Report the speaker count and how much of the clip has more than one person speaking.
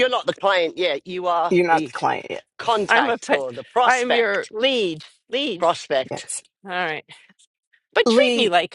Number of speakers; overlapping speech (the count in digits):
3, about 26%